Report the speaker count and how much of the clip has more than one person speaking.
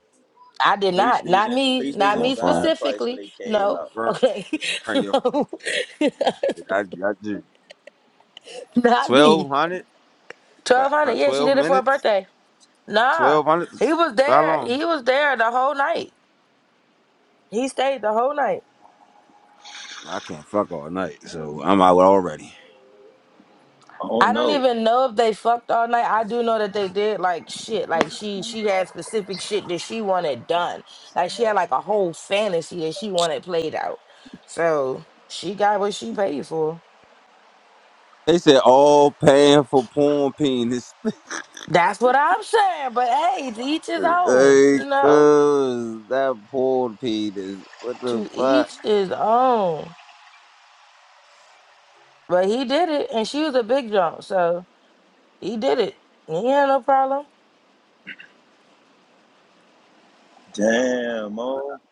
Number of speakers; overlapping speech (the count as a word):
three, about 12%